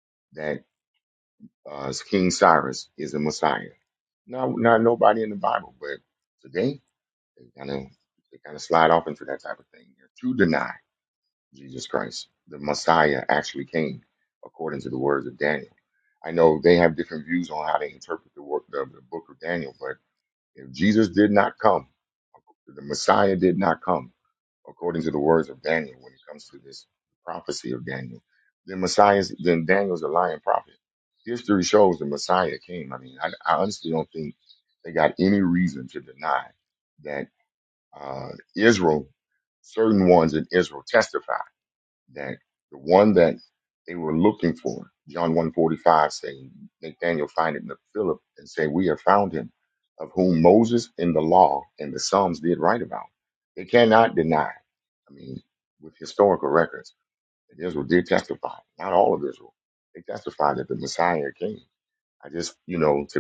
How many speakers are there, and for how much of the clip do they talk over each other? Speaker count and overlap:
one, no overlap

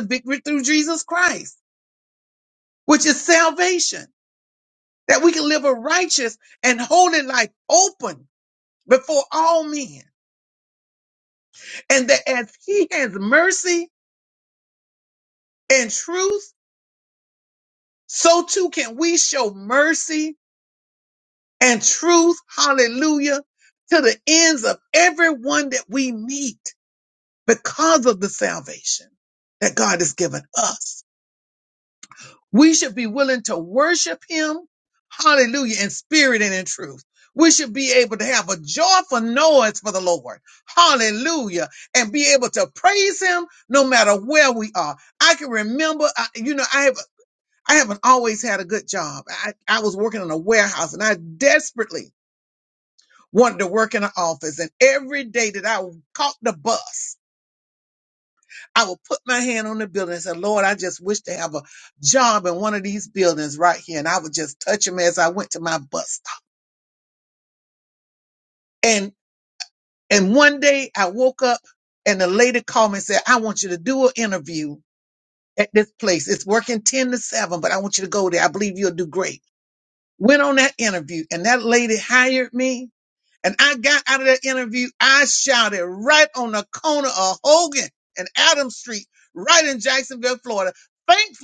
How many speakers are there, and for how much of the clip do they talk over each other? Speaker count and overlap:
one, no overlap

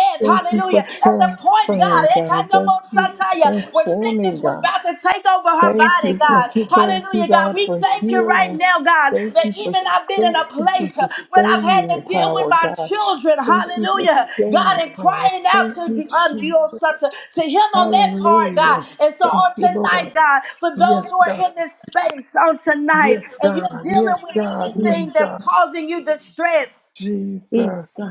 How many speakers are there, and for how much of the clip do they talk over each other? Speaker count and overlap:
two, about 69%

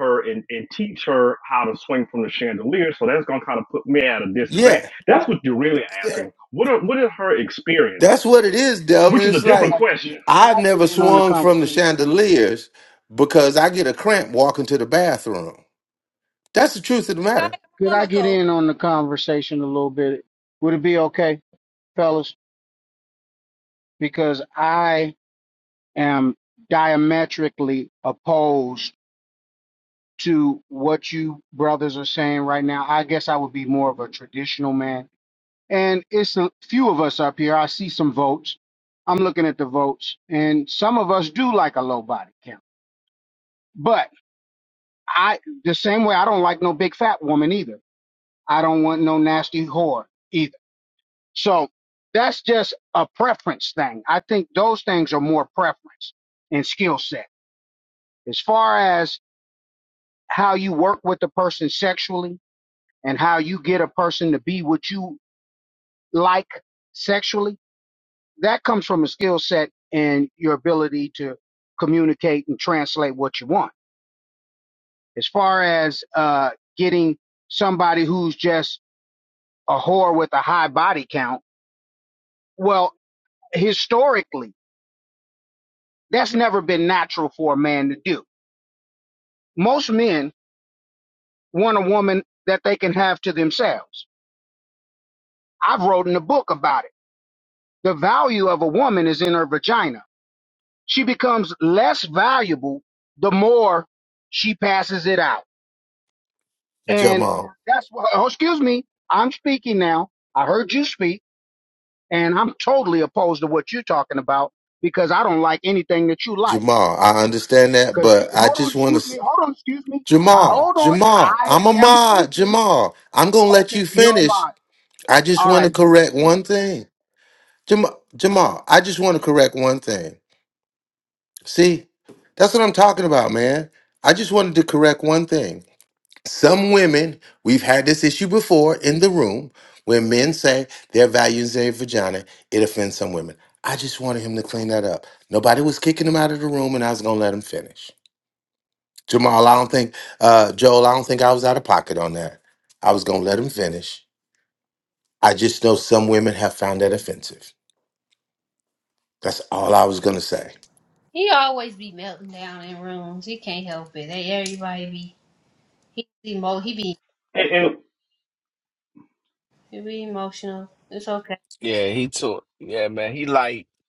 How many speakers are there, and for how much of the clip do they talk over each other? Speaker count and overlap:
five, about 6%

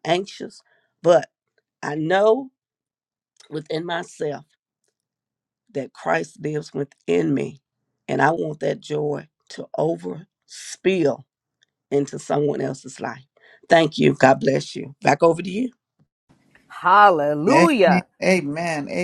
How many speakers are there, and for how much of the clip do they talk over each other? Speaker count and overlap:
three, about 1%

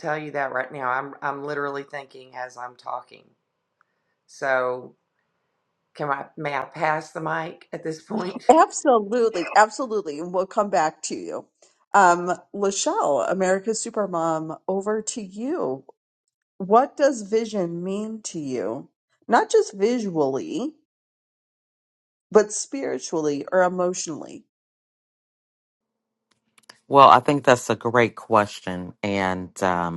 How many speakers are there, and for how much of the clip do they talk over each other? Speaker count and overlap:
three, under 1%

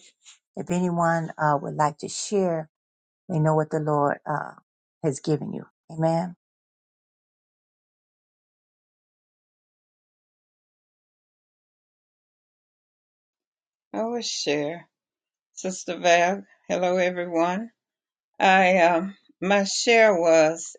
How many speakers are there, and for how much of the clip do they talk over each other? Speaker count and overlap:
two, no overlap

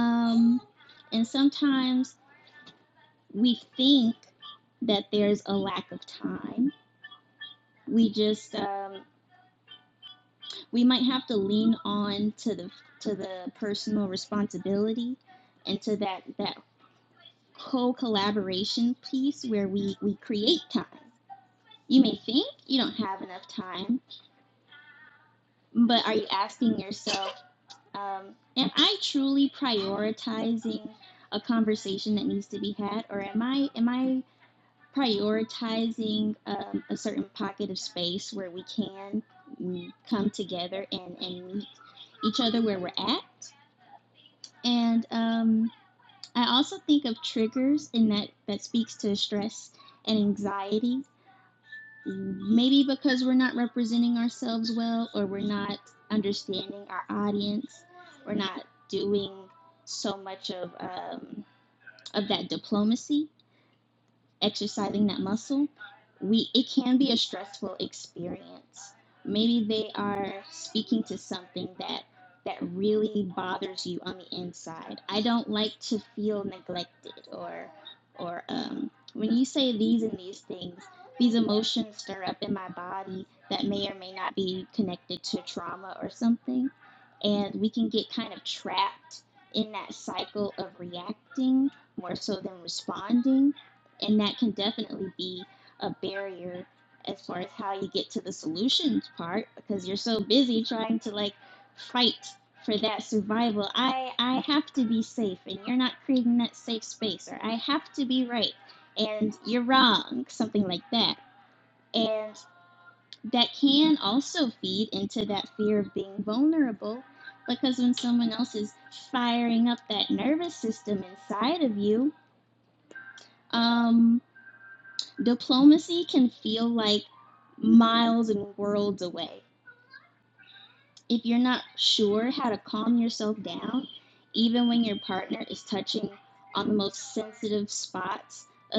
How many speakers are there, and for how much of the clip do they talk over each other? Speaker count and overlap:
one, no overlap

